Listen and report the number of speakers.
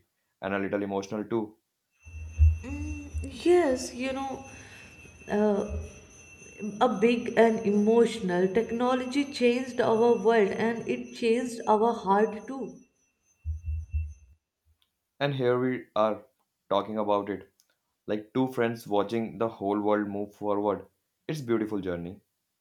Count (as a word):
two